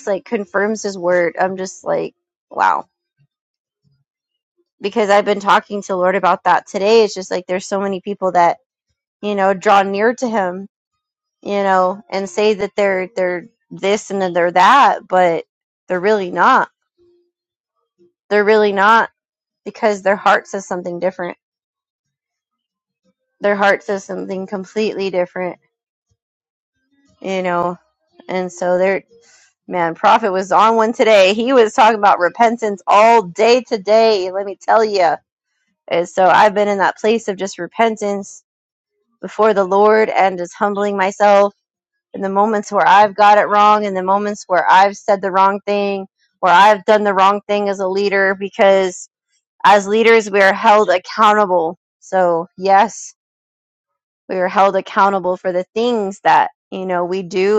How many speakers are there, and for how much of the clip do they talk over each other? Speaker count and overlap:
1, no overlap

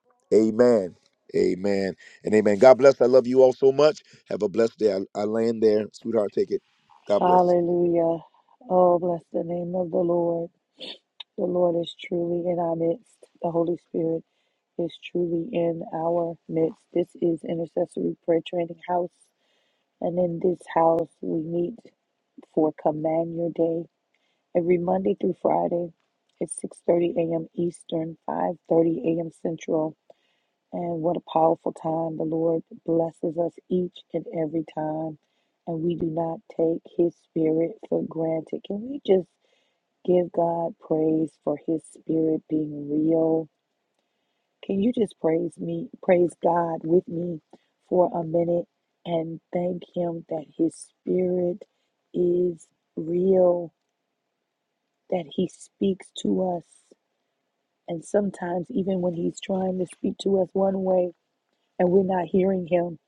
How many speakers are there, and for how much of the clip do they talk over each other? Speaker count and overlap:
2, under 1%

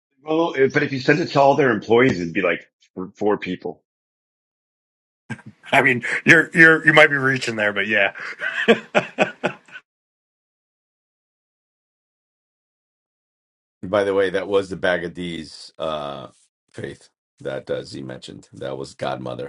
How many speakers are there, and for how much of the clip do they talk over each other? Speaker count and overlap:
3, no overlap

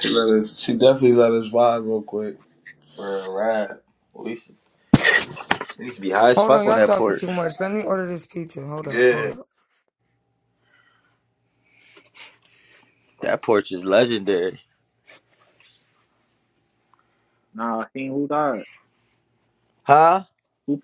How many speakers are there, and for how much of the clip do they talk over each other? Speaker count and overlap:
4, about 7%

